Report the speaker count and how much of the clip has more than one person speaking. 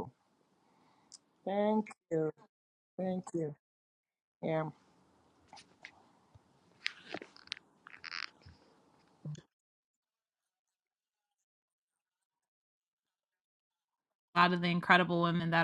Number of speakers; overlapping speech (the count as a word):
two, no overlap